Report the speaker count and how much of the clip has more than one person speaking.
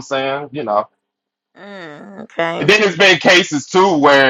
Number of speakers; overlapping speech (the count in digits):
2, about 2%